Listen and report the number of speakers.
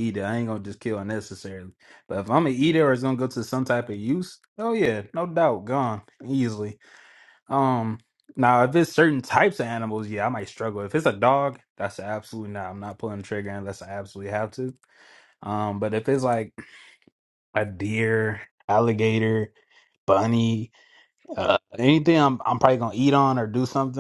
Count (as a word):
one